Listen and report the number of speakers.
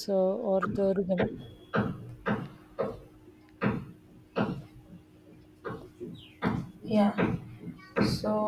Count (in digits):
2